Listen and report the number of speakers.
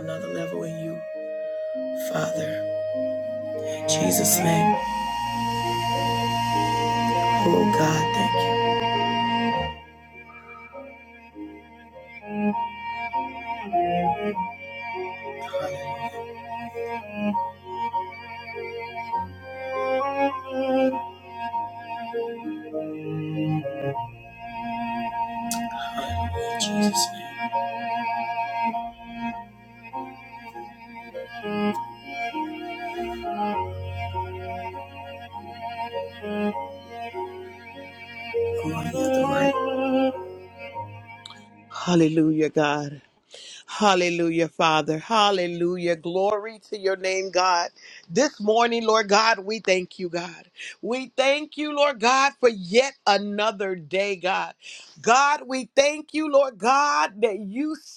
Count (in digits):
2